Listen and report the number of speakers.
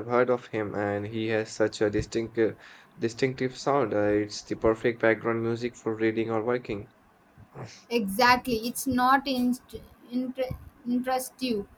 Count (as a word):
two